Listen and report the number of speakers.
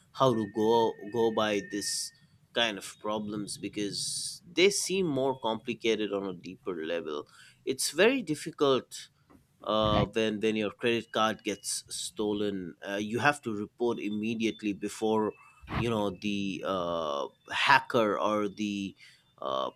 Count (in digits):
1